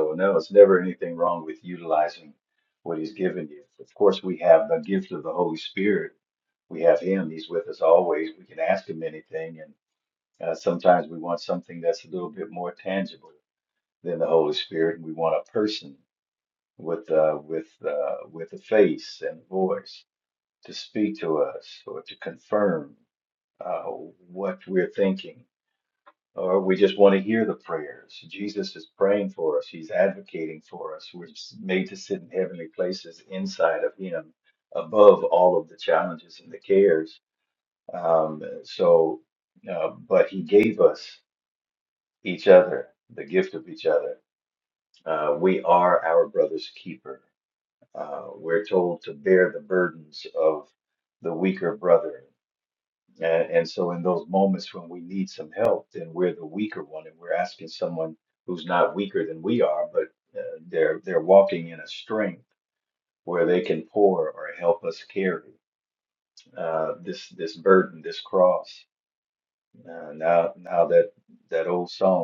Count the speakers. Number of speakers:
one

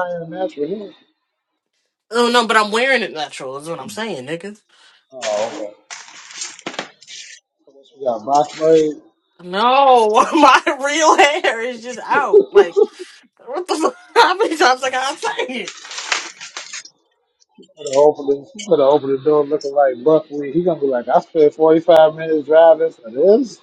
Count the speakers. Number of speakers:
two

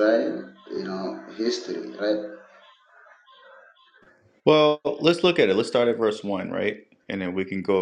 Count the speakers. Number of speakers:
two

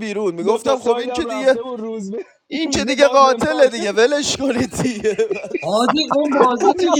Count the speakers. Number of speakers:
three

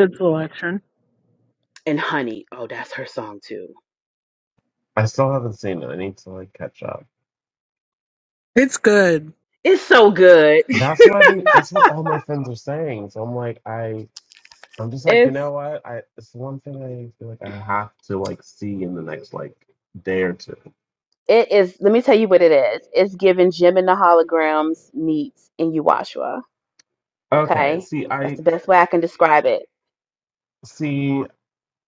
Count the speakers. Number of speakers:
three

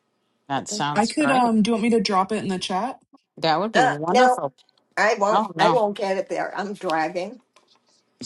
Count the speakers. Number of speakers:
three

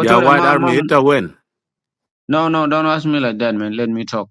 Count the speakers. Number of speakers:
two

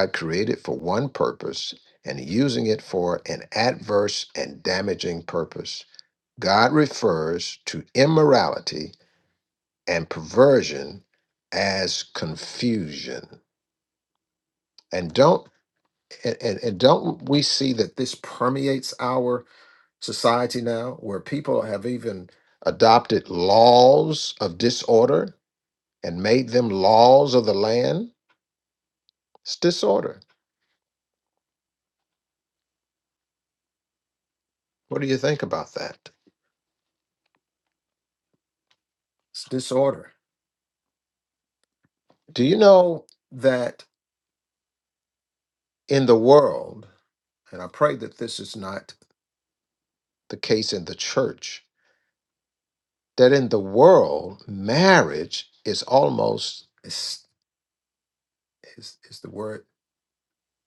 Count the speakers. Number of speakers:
one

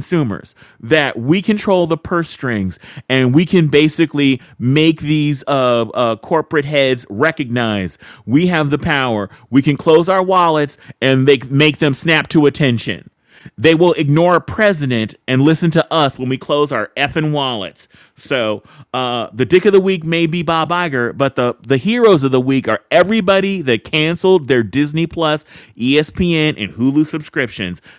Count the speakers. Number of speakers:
one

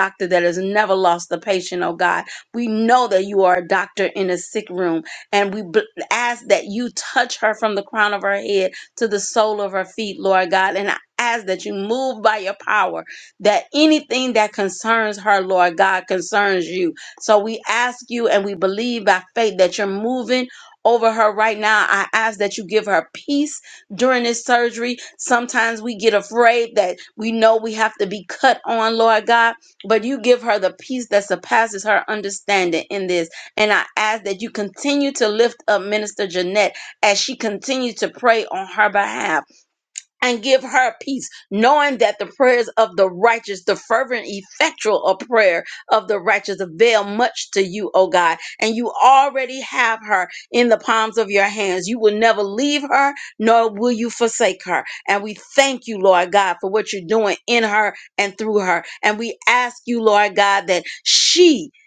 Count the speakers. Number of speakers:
one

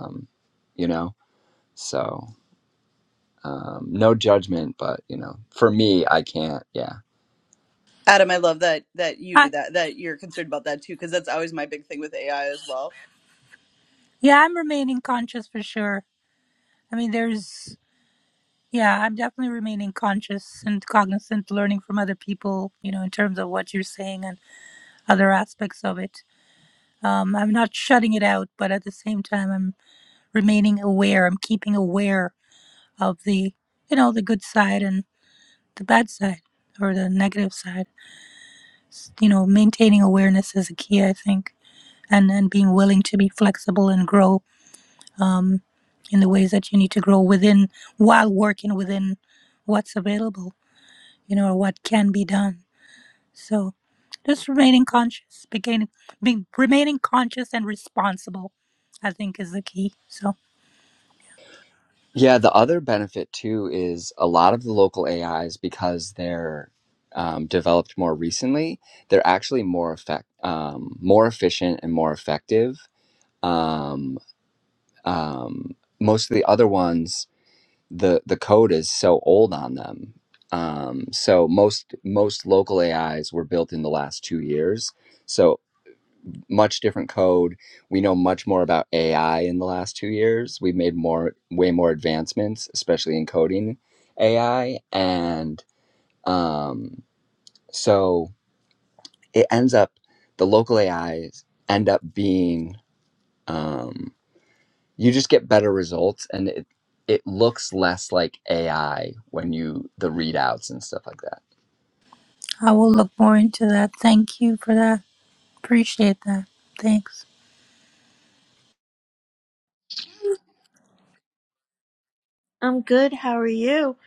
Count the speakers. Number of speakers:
four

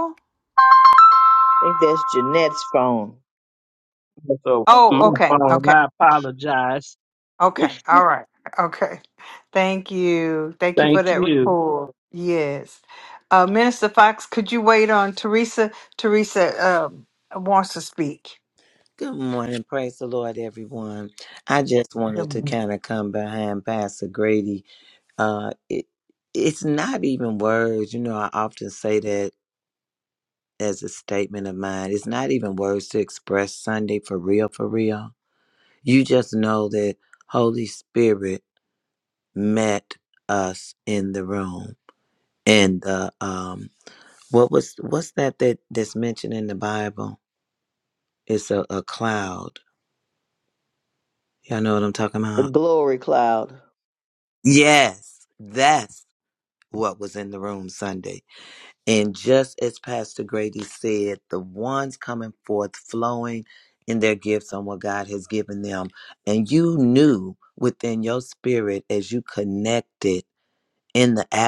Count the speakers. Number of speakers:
four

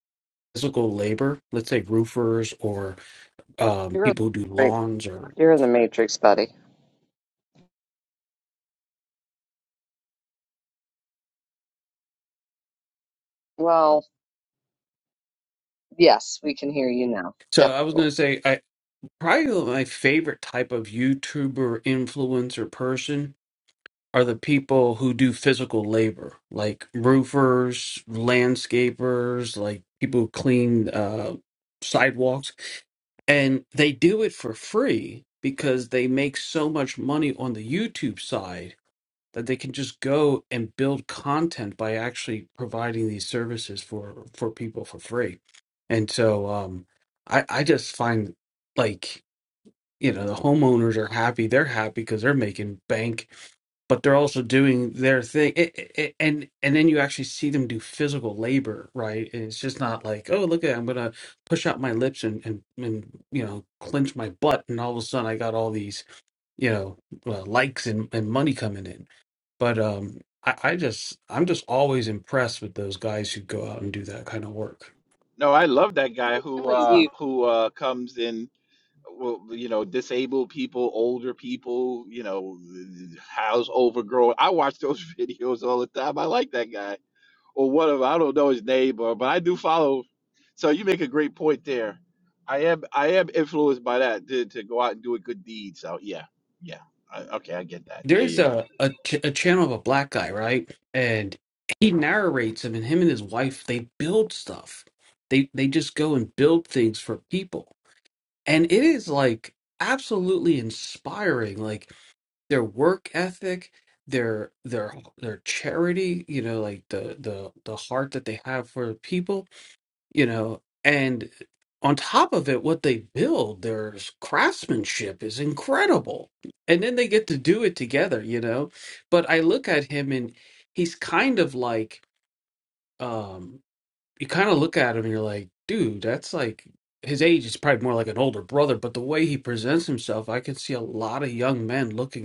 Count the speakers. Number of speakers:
three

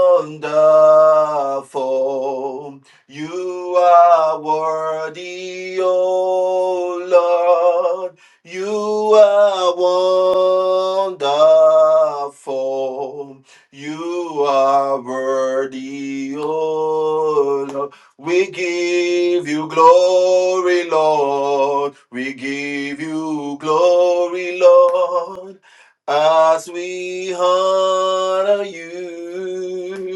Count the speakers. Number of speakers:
one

